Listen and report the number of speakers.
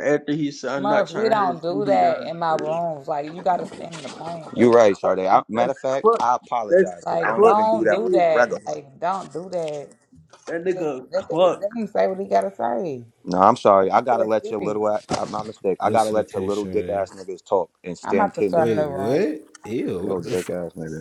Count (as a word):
four